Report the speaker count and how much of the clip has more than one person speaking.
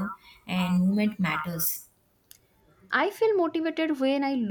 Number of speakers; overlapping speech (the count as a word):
two, no overlap